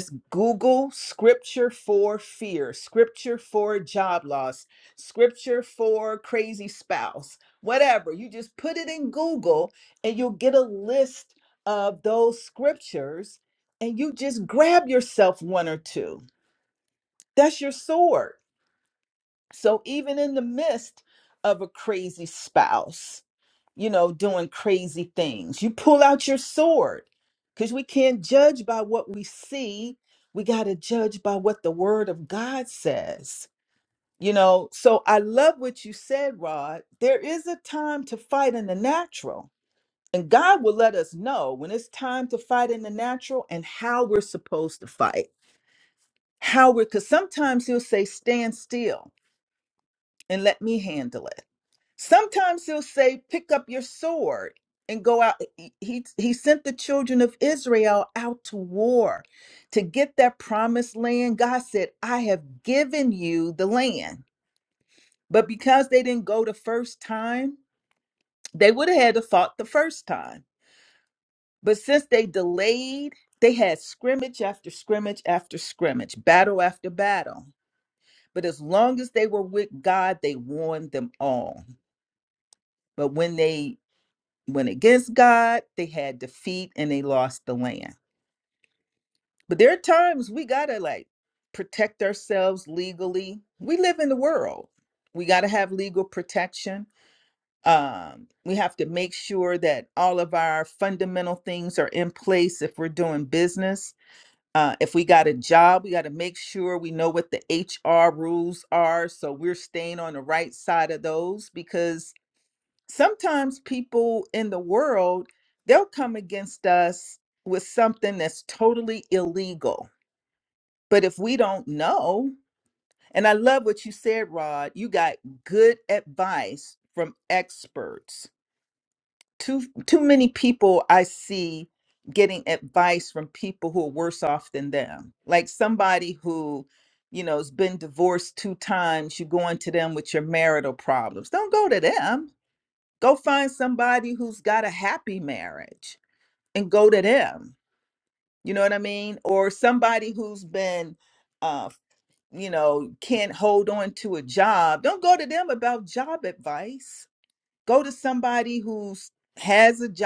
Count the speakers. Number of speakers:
1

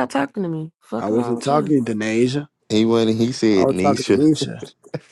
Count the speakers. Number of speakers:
3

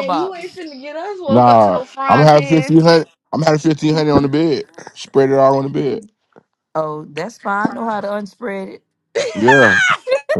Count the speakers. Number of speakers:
3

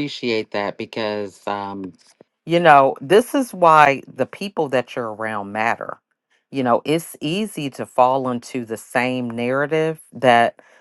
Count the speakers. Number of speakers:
1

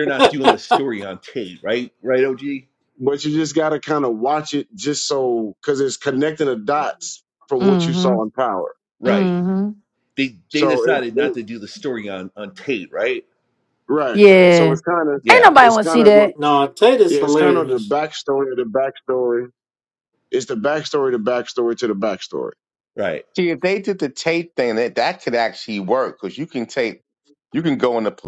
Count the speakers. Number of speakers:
5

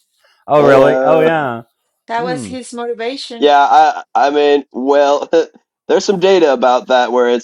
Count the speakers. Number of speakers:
3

